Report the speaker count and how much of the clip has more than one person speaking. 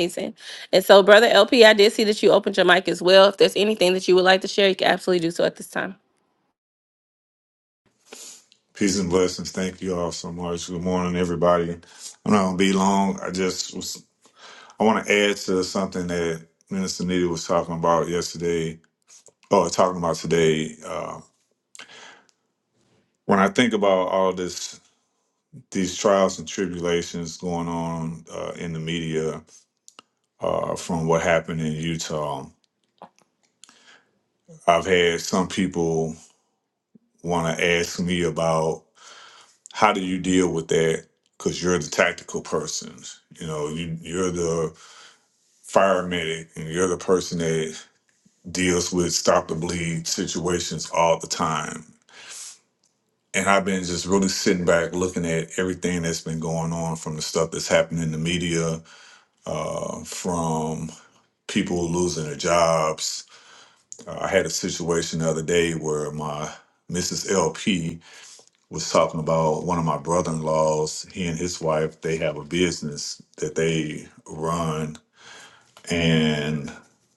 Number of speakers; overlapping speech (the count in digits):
2, no overlap